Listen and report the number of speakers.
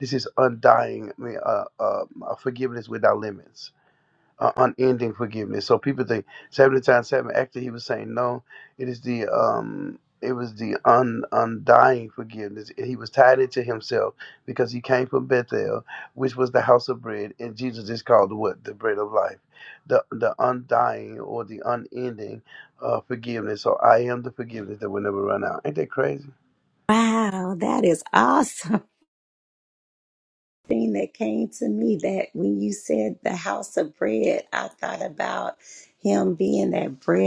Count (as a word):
two